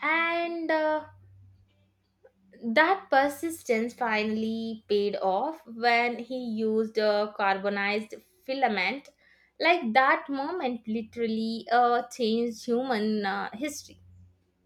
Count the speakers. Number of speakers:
1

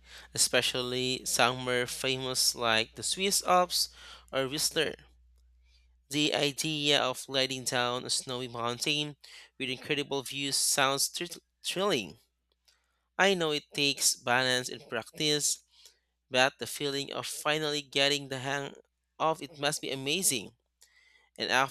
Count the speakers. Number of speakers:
1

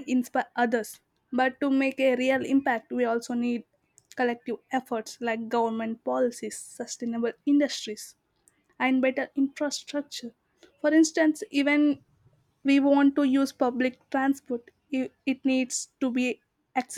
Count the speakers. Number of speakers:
1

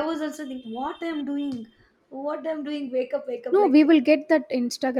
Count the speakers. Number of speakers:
2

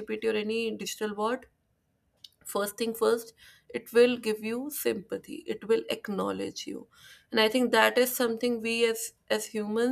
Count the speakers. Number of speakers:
1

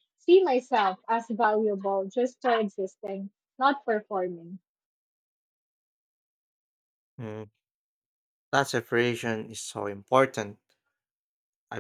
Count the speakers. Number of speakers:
2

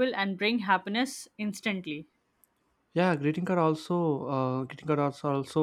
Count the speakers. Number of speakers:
2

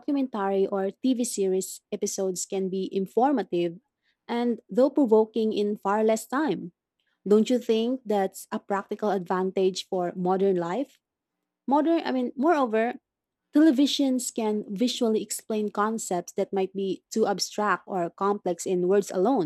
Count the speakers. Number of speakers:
1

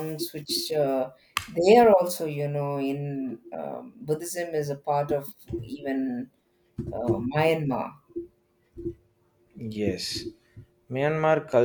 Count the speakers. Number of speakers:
2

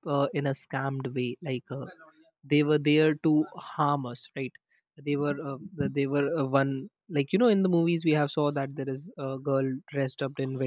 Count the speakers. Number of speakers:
1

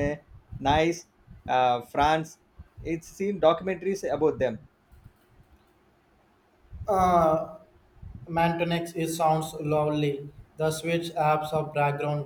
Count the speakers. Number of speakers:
2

